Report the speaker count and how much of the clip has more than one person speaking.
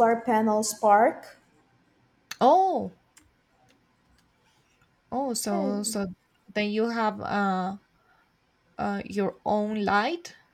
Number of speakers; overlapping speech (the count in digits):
2, about 4%